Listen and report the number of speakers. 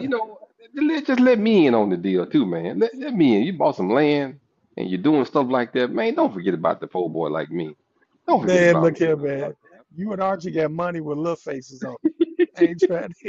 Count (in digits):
2